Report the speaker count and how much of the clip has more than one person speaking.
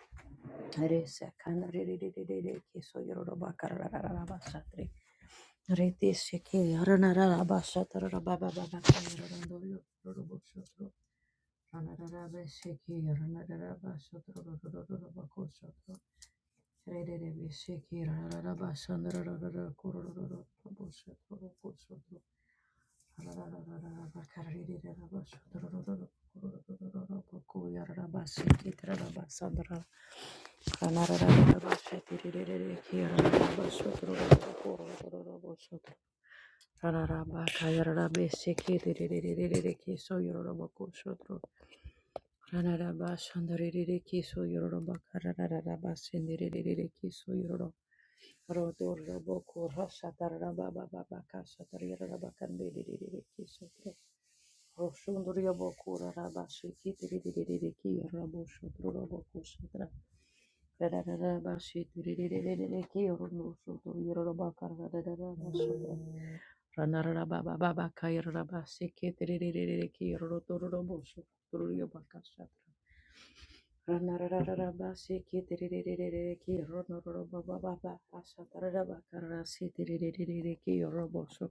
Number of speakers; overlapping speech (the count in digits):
1, no overlap